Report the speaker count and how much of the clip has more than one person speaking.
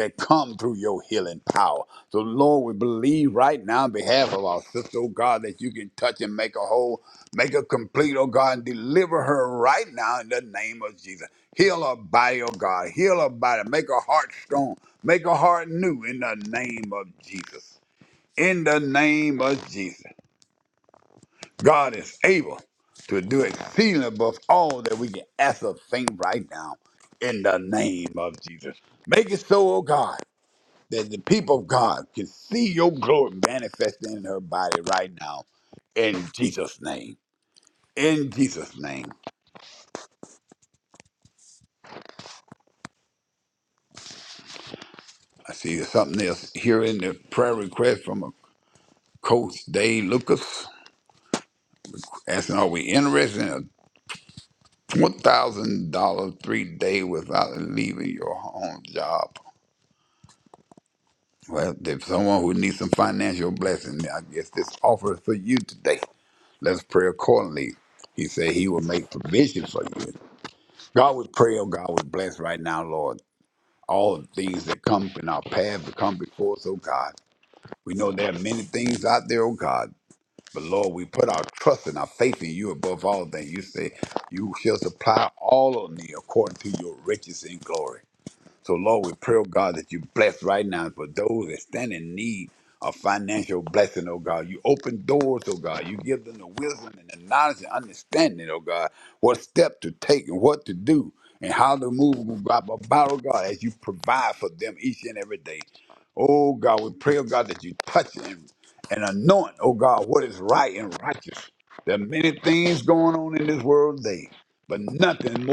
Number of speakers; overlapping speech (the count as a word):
one, no overlap